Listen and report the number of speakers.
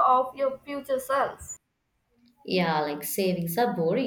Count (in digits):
2